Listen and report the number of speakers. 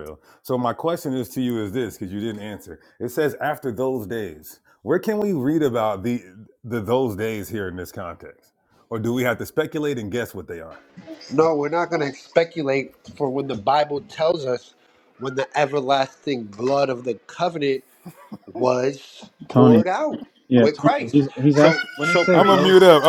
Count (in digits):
3